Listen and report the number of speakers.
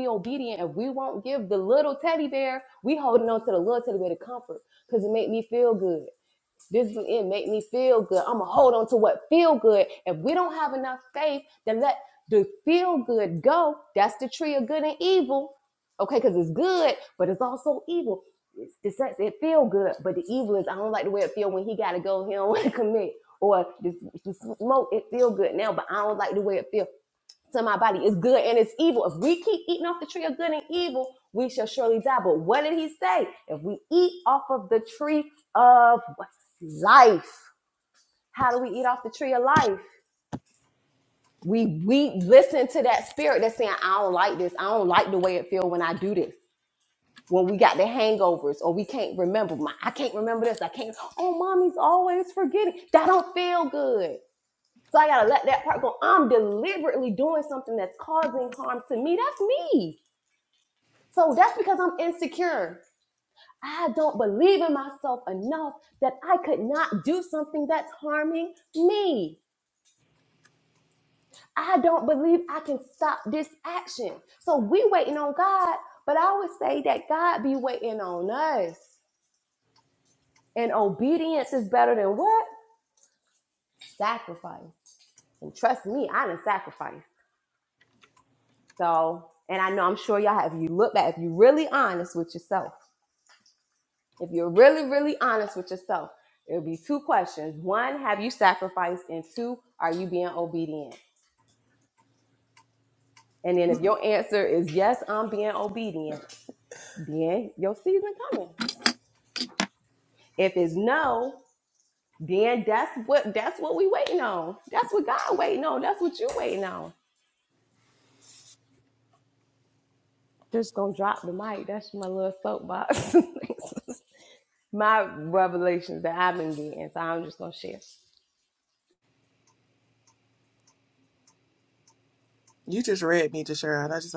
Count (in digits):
2